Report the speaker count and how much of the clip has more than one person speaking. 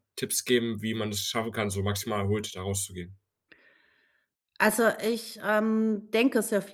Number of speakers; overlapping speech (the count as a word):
two, no overlap